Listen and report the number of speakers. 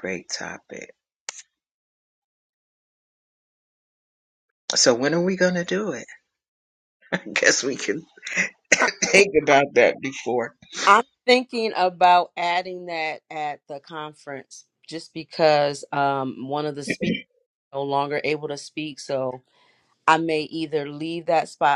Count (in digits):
2